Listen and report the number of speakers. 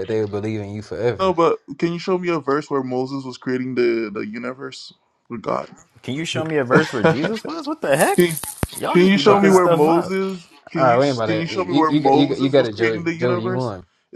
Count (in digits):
3